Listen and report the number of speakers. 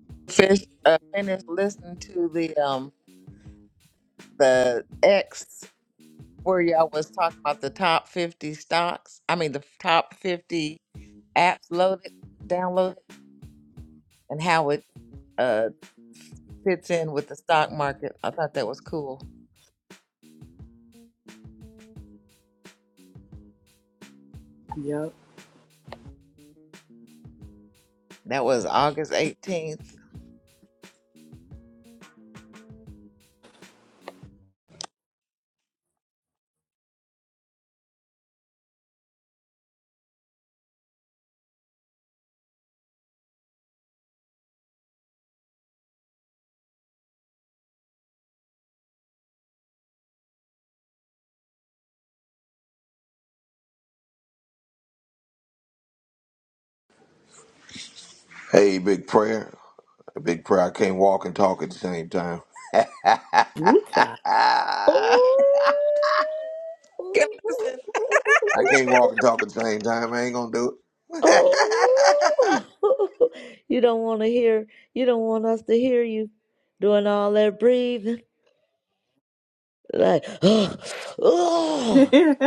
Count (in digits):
4